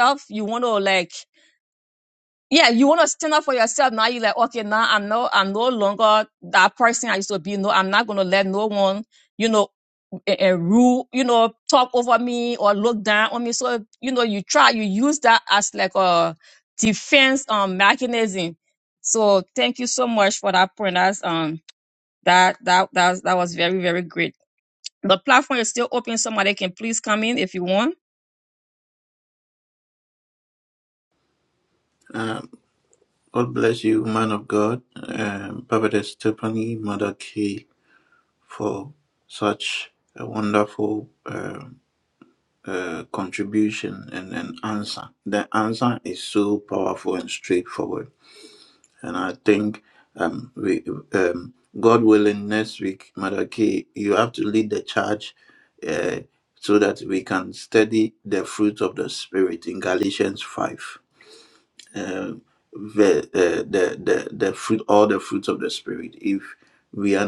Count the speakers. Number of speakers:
two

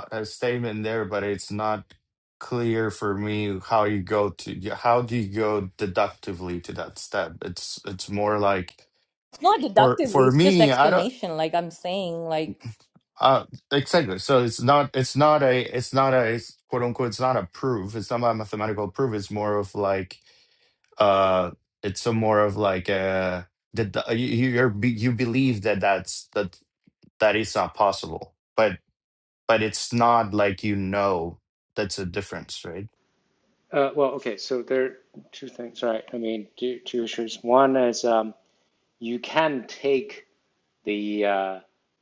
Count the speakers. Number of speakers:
three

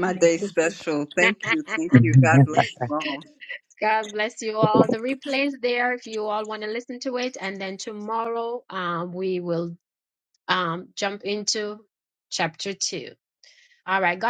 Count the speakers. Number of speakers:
two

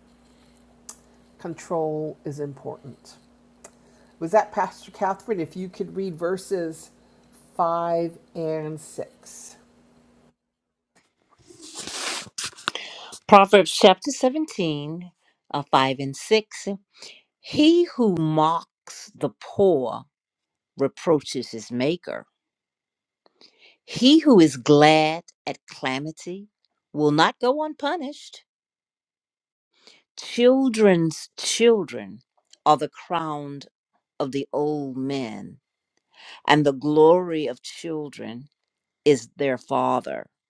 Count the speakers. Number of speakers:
two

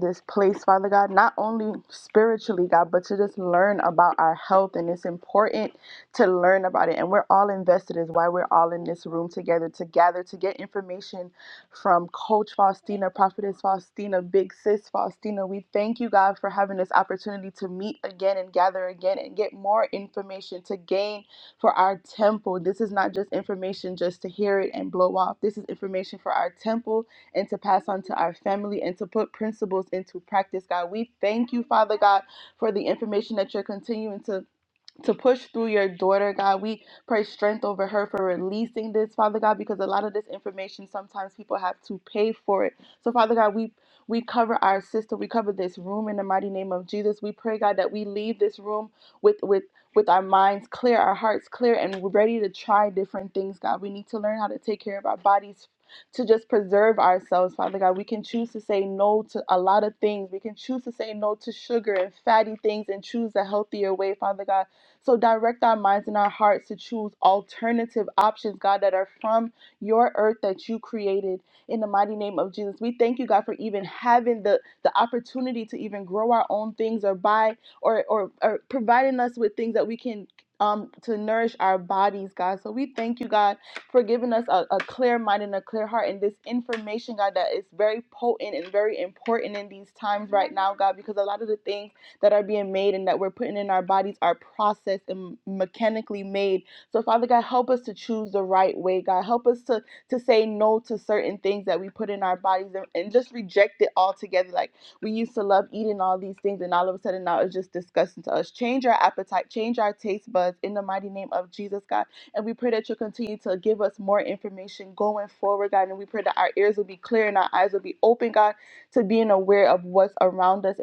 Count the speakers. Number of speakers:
one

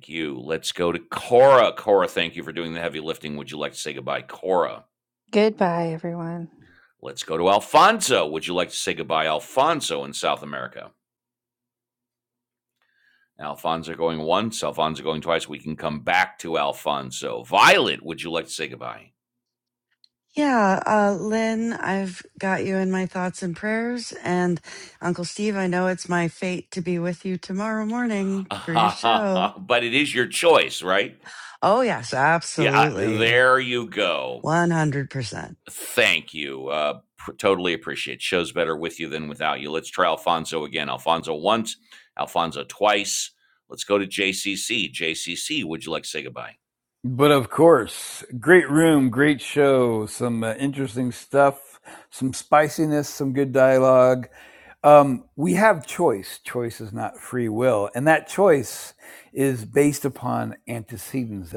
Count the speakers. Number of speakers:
four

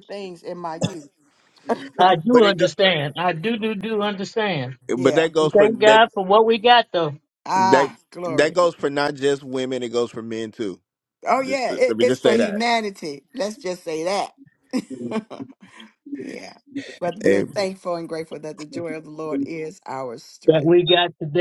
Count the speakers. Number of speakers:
three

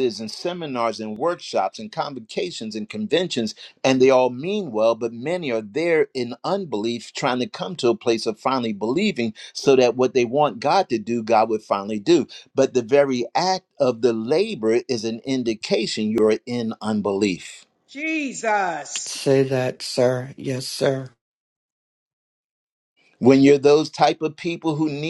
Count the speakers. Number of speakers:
three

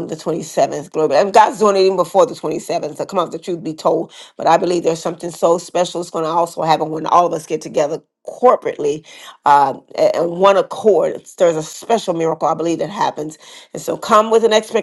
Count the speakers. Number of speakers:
one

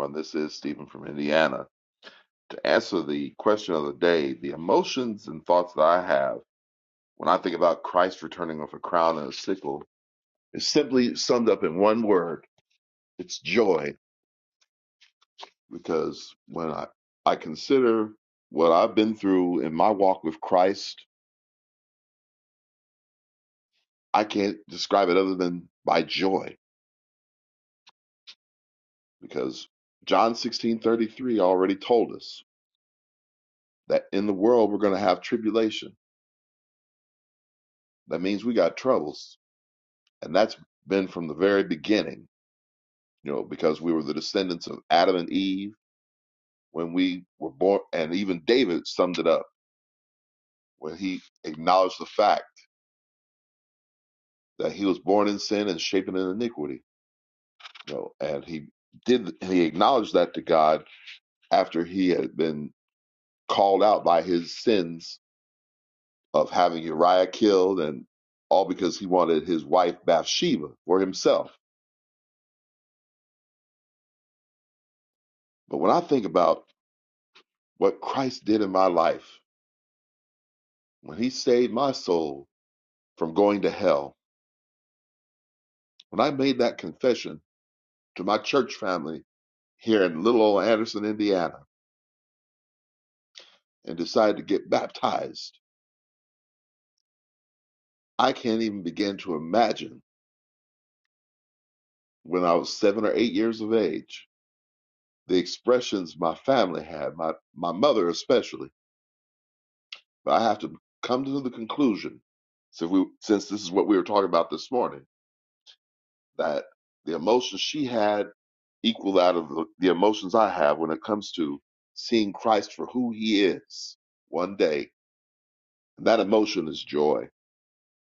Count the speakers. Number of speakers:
one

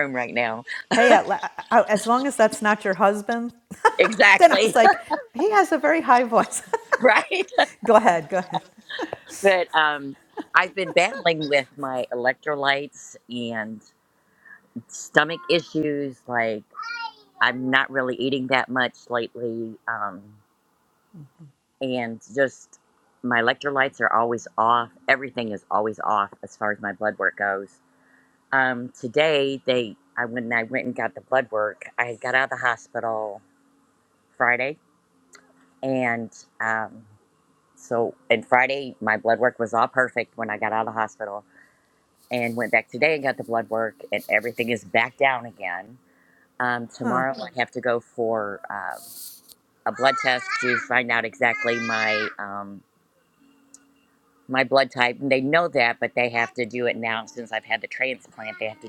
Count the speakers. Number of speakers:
two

